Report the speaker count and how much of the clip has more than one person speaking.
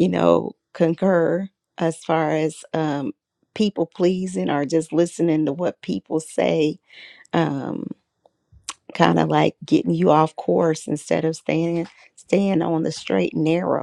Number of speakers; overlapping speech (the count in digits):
1, no overlap